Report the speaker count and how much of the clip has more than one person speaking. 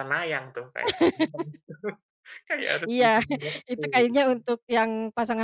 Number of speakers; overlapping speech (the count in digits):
2, under 1%